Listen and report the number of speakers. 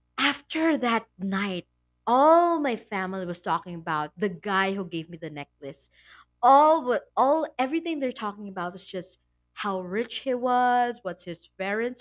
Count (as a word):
one